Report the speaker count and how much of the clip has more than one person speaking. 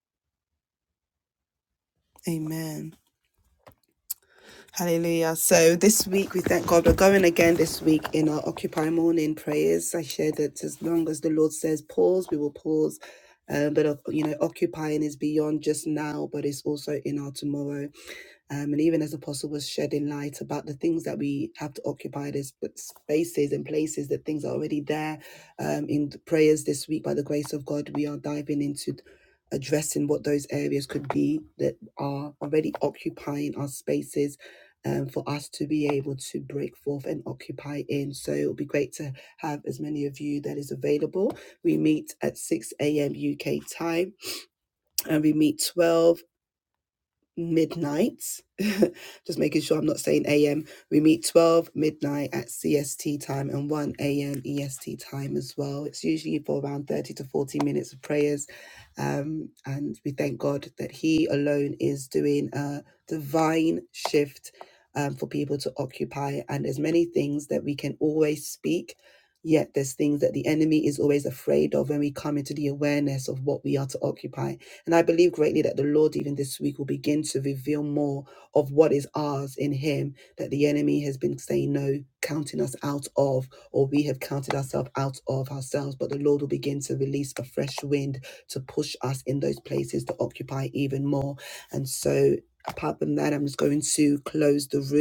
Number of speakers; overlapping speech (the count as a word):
one, no overlap